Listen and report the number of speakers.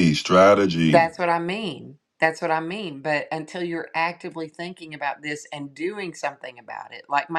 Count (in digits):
2